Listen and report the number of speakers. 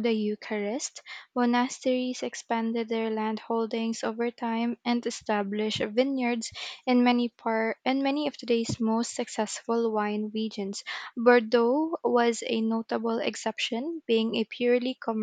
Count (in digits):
1